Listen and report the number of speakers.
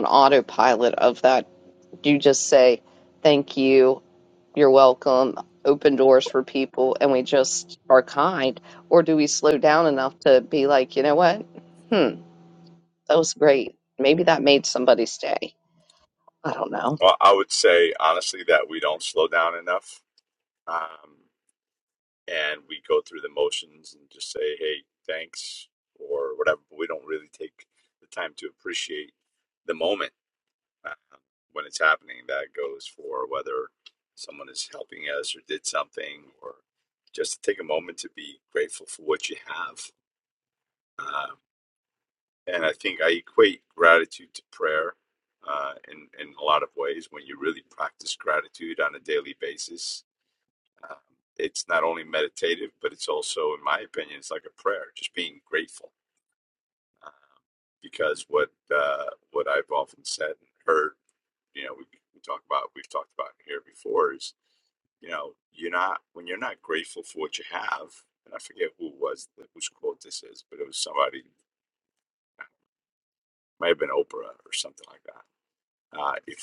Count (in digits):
2